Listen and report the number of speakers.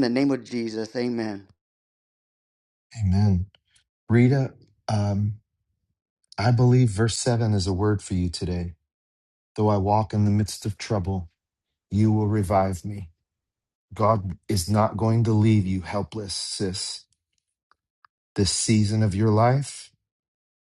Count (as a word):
two